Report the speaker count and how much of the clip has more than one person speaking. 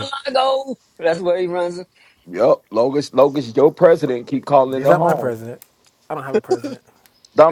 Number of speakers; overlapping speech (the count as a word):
three, about 8%